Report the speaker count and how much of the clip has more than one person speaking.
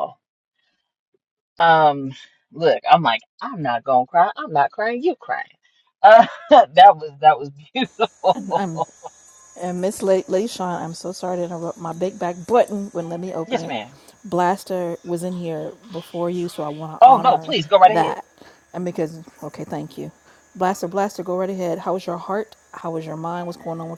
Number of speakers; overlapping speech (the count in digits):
2, about 6%